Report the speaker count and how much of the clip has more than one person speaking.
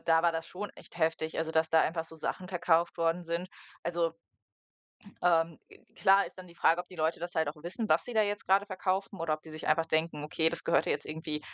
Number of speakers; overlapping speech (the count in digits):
1, no overlap